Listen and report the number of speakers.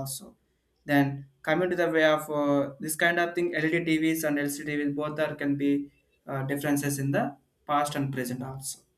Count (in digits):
1